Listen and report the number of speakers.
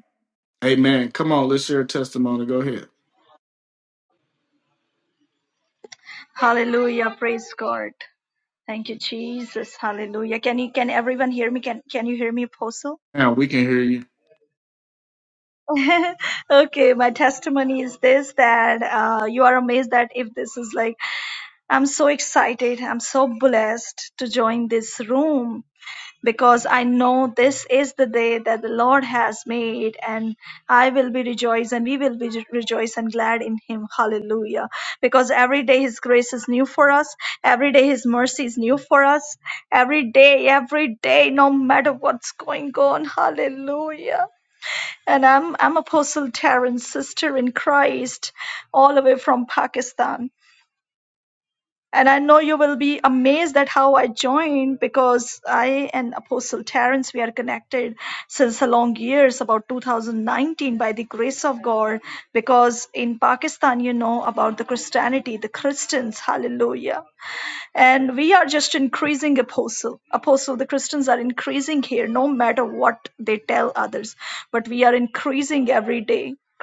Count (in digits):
2